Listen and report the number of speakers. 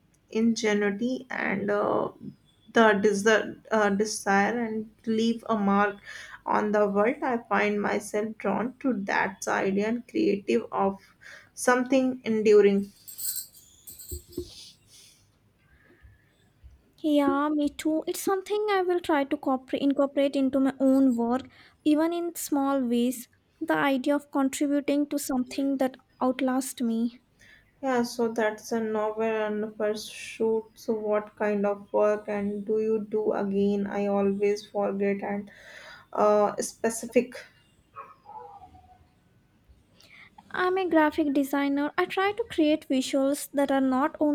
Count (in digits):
2